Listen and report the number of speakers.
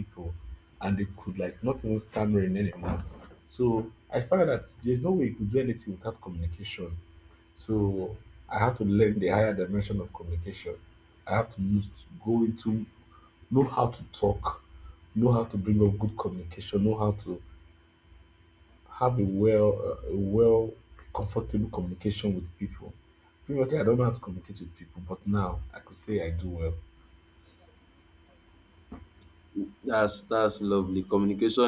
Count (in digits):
2